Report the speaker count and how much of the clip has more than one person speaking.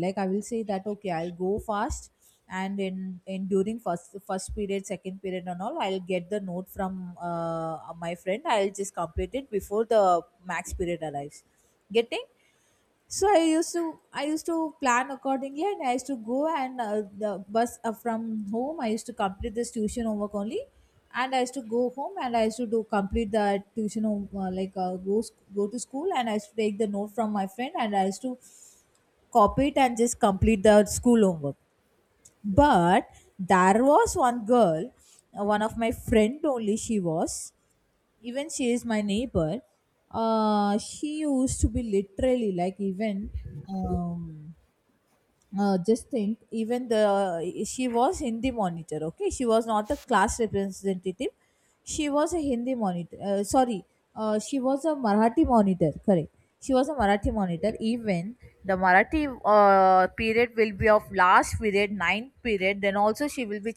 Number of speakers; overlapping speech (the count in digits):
1, no overlap